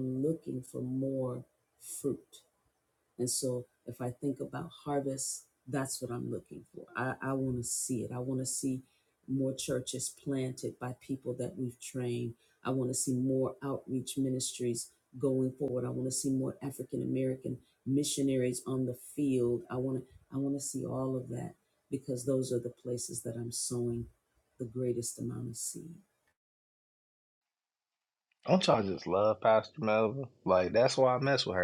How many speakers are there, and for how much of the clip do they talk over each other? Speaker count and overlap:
two, no overlap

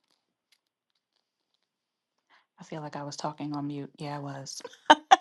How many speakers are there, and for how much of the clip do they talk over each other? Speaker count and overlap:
one, no overlap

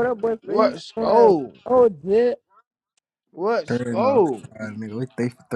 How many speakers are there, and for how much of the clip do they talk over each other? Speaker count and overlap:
three, about 29%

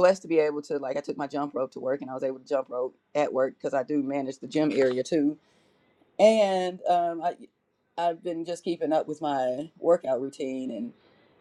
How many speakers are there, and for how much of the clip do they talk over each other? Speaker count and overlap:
one, no overlap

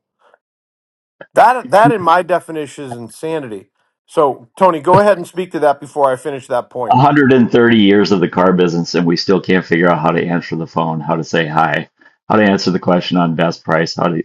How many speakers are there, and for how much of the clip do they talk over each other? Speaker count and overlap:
two, about 1%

